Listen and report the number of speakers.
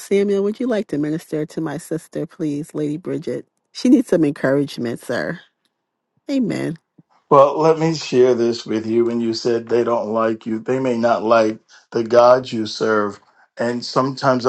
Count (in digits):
2